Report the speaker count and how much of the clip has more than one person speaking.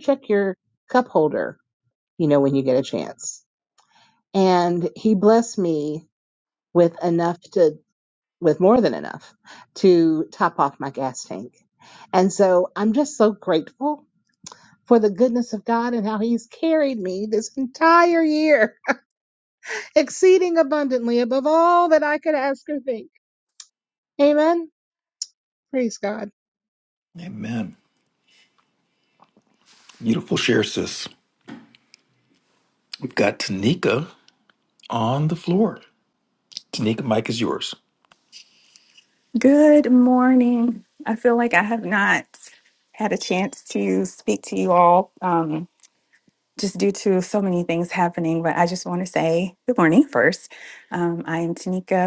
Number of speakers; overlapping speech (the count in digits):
3, no overlap